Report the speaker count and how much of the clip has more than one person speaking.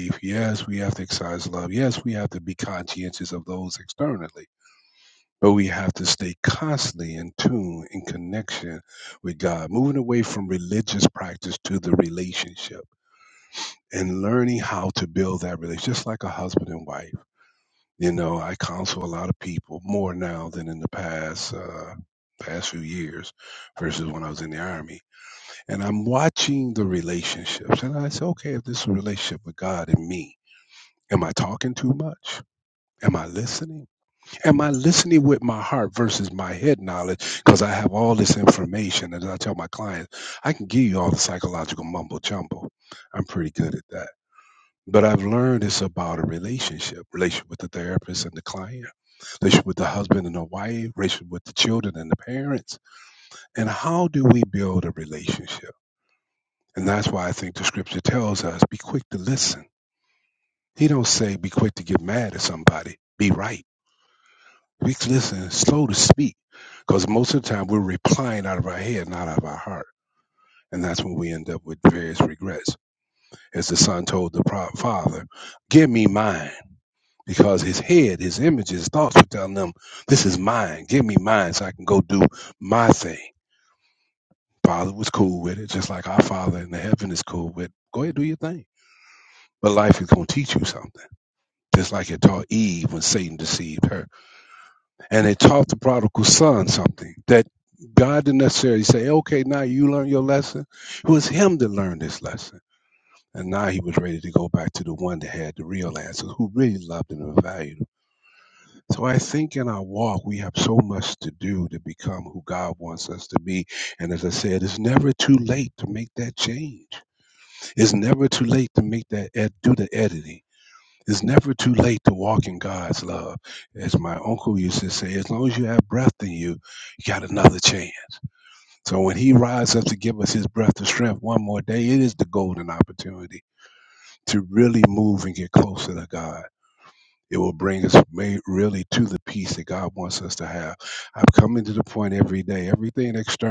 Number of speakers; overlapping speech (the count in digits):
1, no overlap